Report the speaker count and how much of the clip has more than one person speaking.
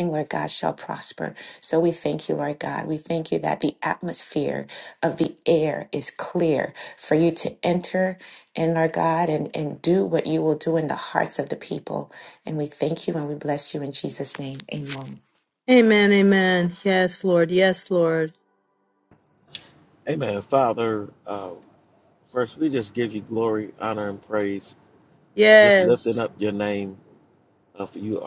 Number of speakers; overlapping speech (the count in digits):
3, about 2%